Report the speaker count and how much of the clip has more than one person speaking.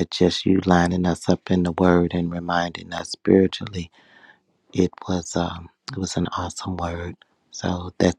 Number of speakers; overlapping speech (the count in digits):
1, no overlap